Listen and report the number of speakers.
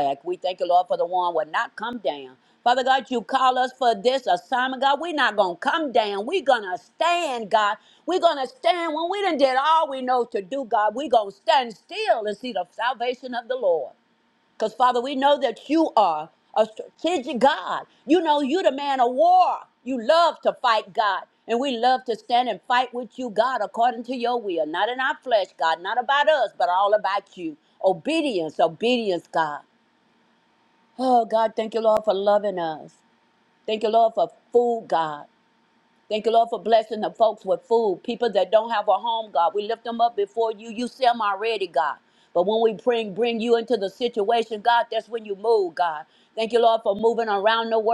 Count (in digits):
1